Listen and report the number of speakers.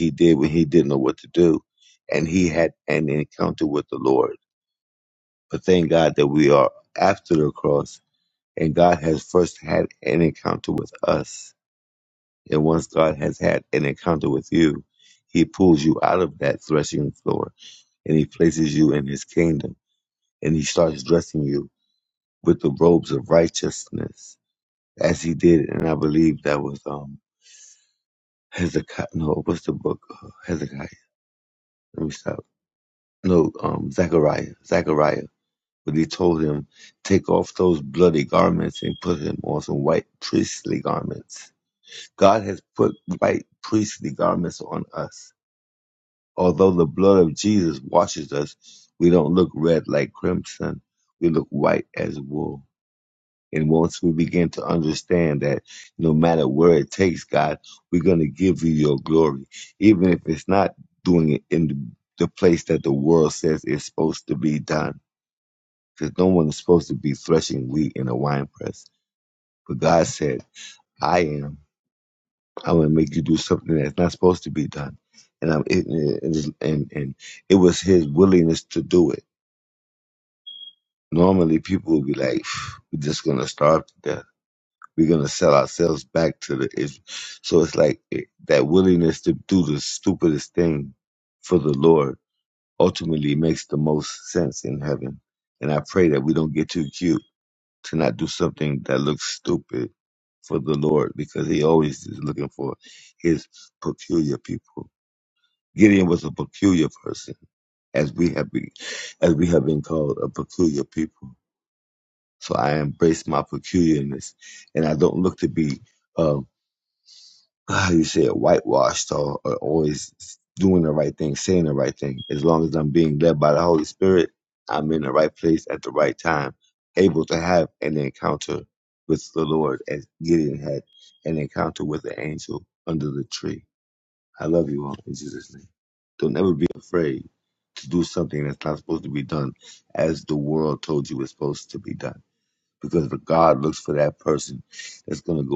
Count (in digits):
1